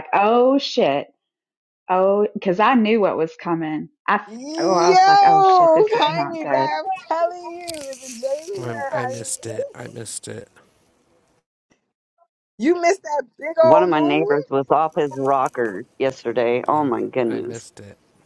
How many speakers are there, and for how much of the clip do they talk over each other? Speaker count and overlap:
4, about 19%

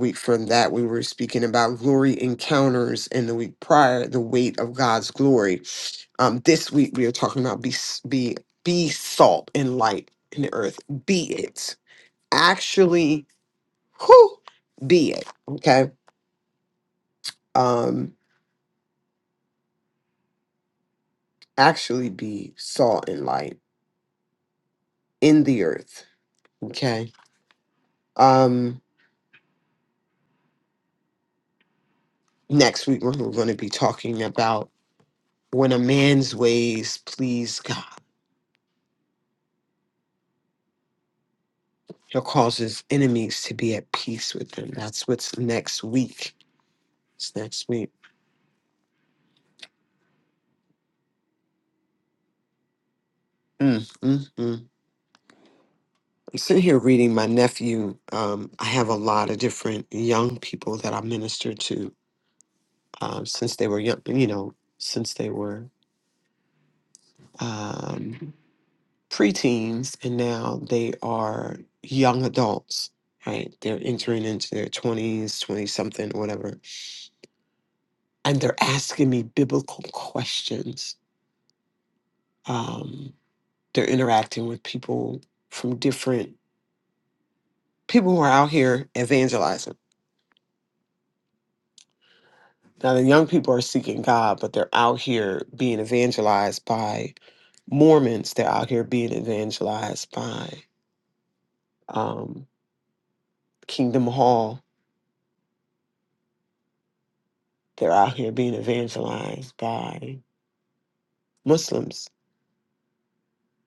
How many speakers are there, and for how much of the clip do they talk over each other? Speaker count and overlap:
1, no overlap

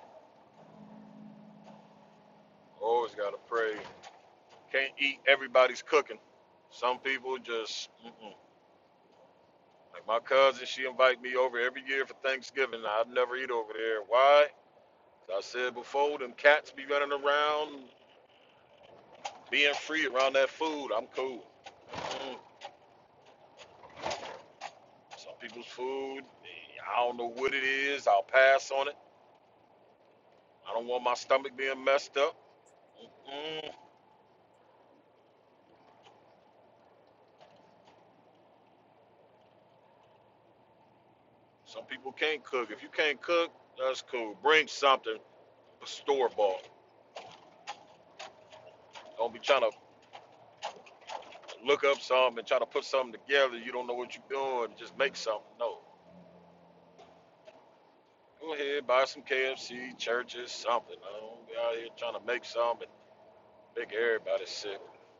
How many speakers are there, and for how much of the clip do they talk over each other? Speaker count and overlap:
1, no overlap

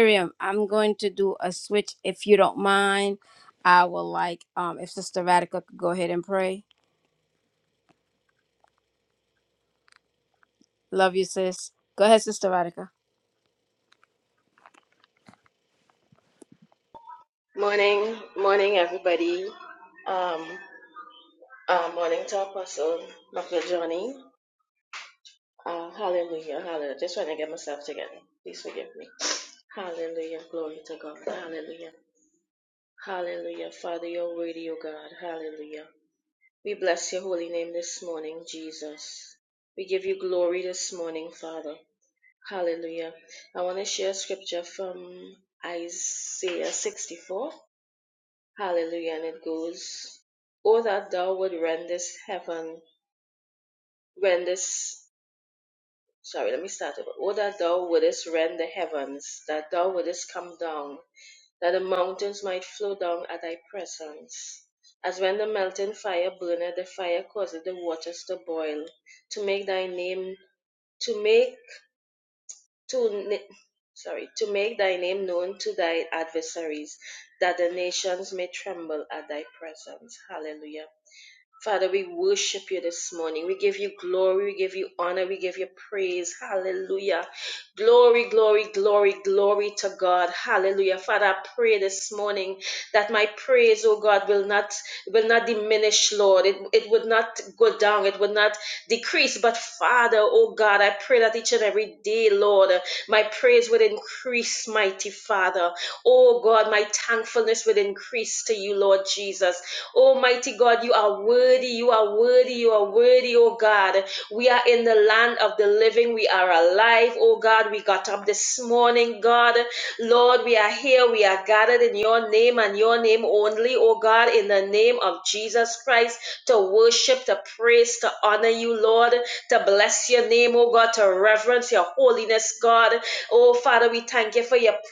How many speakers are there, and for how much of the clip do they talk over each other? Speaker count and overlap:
2, no overlap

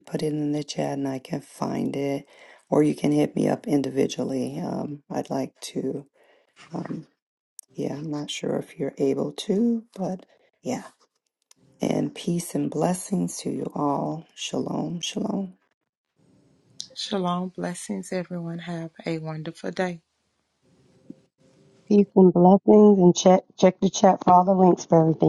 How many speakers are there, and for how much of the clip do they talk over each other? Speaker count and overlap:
3, no overlap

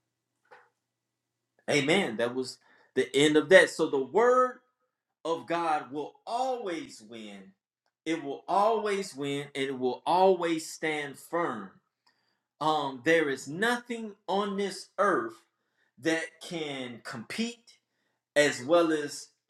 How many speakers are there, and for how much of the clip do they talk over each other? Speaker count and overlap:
1, no overlap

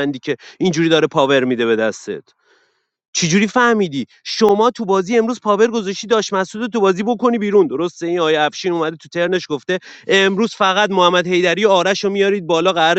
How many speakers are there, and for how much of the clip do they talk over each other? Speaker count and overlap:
1, no overlap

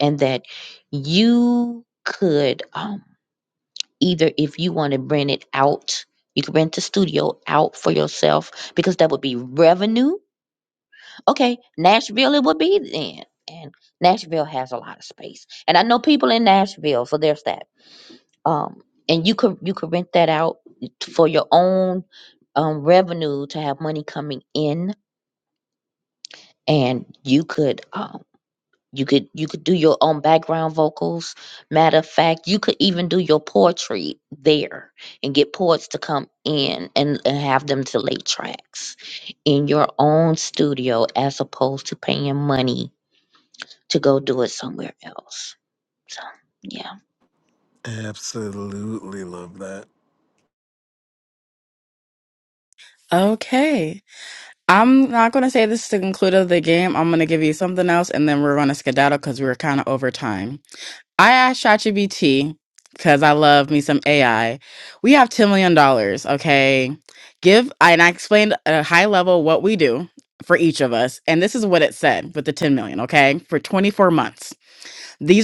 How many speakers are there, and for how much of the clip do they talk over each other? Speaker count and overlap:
3, no overlap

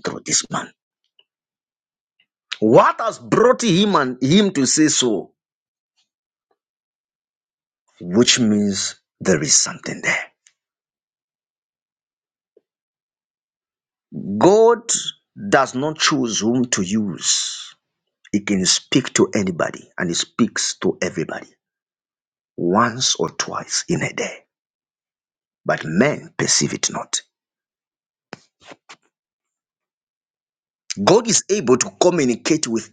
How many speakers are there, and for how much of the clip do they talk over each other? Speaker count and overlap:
1, no overlap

